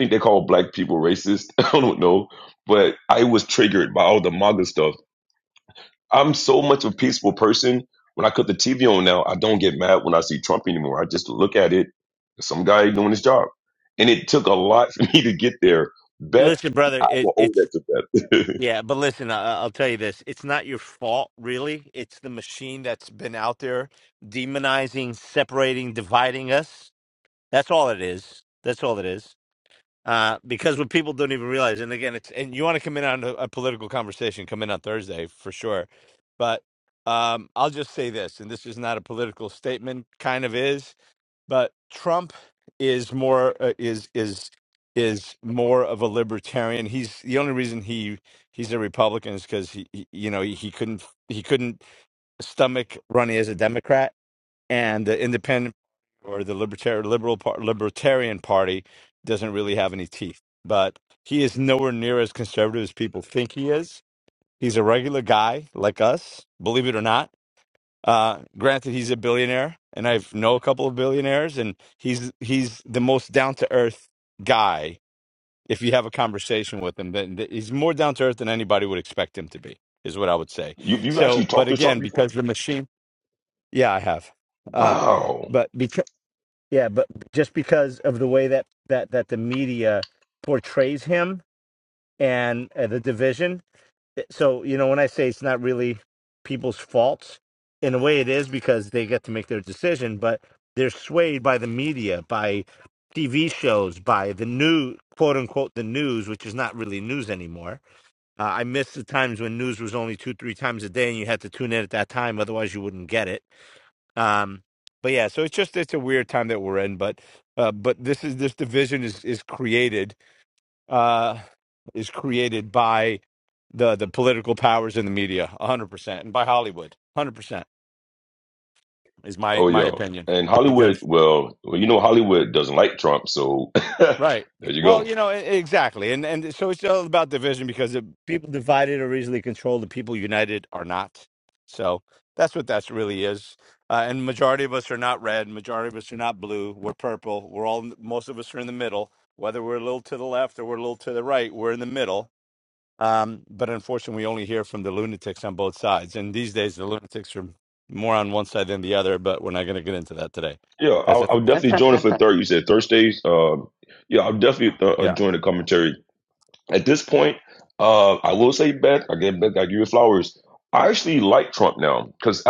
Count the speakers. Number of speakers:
2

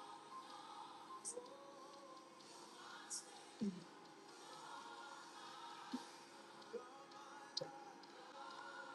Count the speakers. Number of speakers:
0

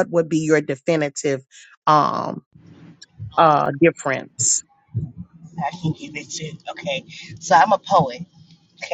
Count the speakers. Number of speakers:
2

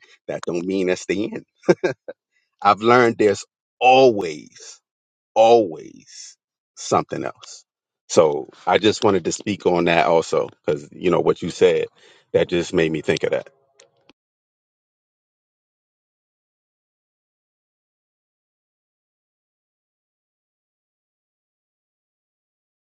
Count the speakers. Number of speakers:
1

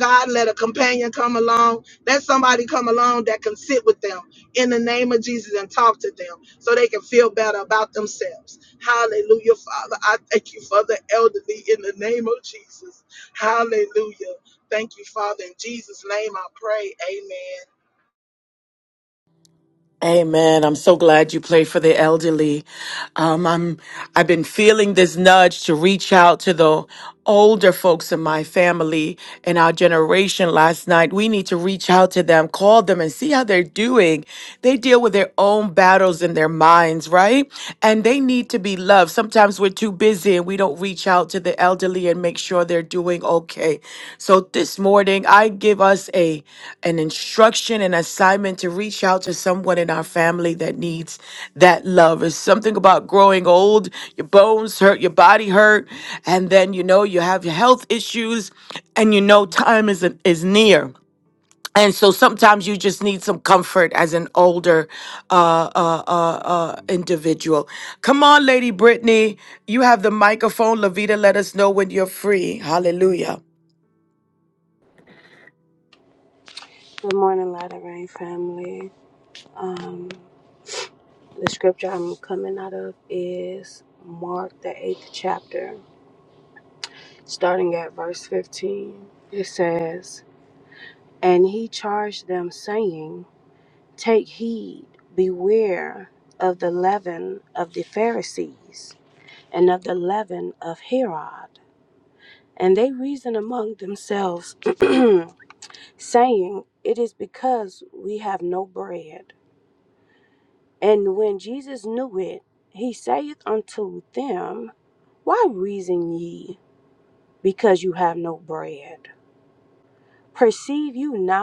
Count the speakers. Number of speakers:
3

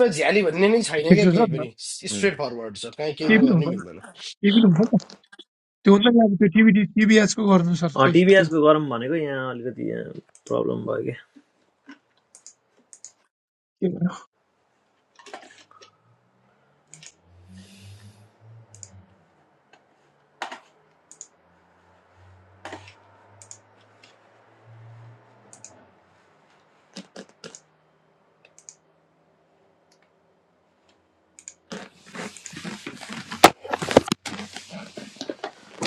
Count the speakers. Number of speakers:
3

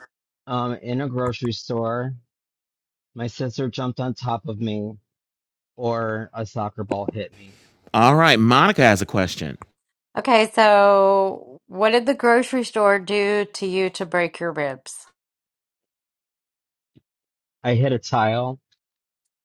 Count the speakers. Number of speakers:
3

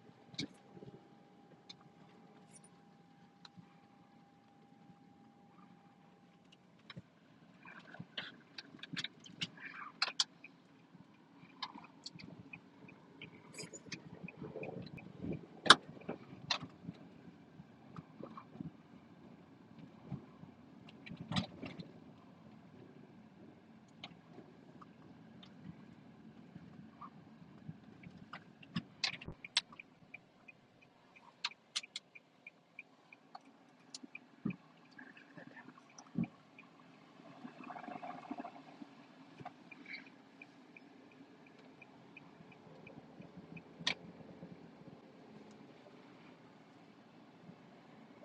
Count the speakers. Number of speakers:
0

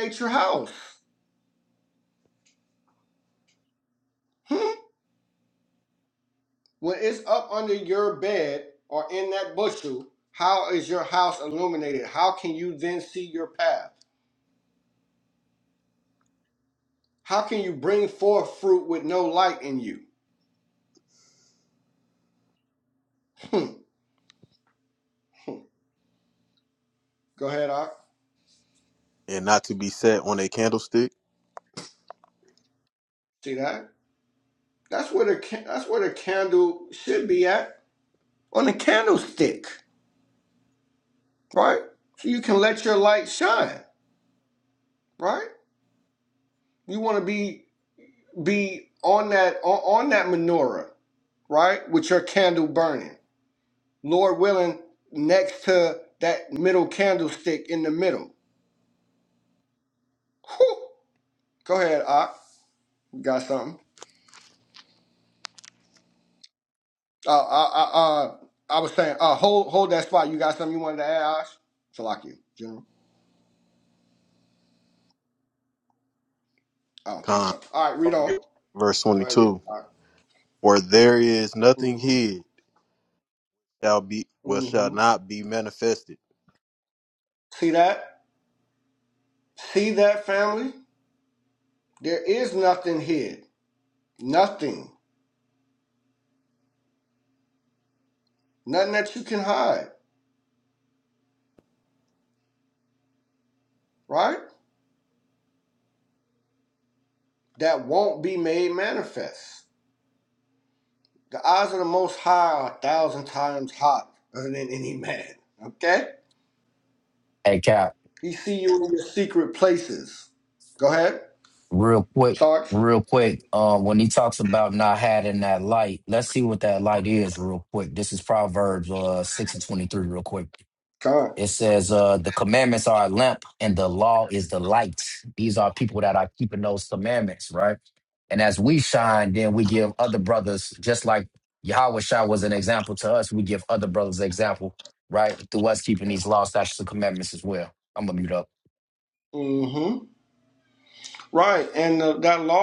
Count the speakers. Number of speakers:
3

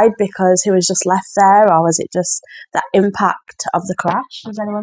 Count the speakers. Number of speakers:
1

